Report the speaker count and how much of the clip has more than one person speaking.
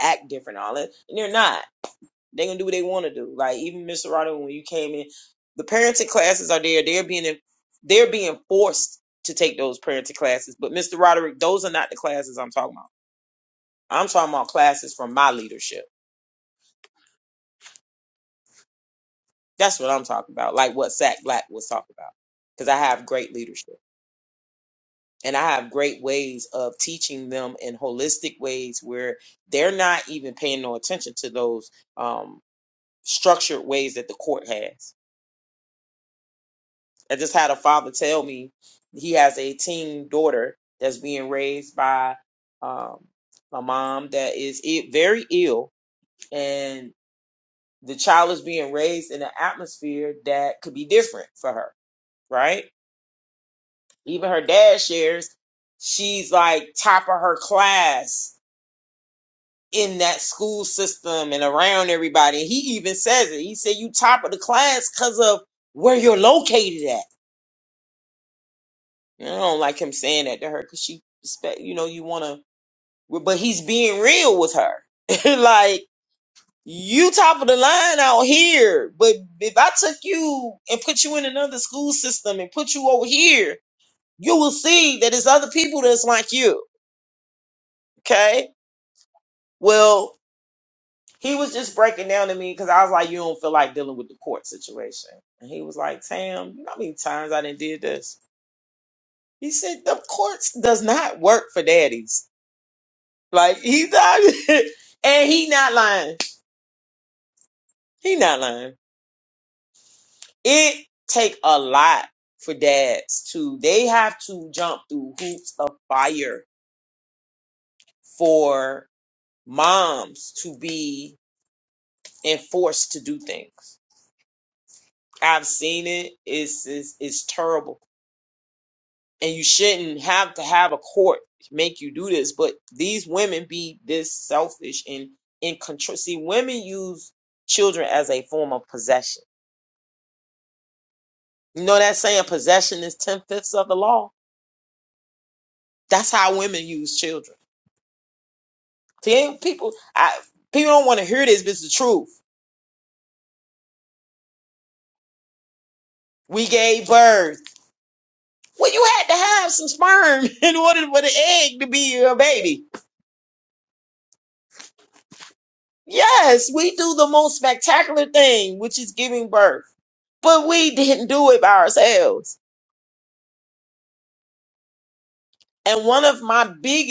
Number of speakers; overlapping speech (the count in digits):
1, no overlap